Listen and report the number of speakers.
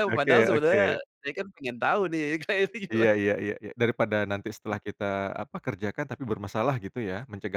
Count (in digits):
2